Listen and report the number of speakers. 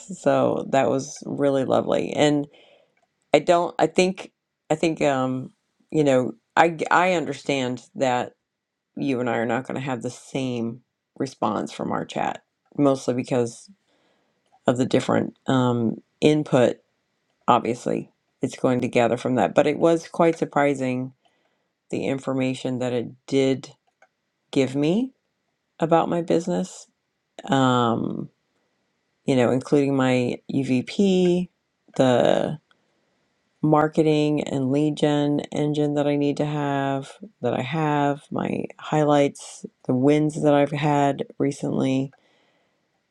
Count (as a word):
one